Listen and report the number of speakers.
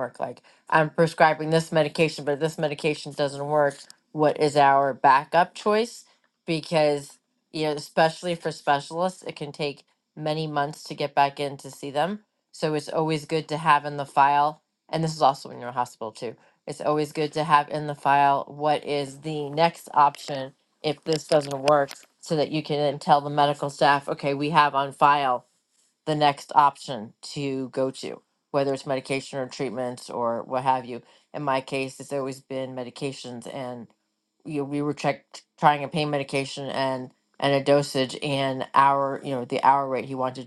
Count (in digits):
1